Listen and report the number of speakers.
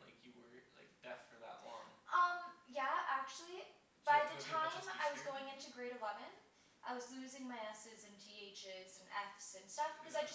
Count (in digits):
2